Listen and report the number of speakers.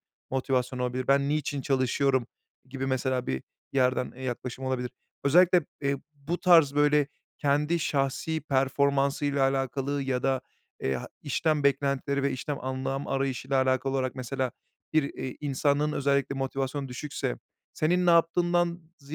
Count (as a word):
one